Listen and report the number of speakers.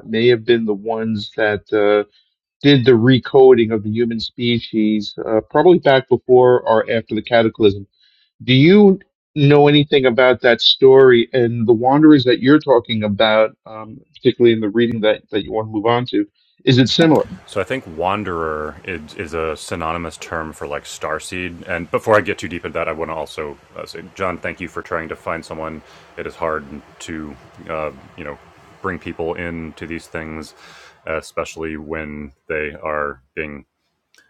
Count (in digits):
2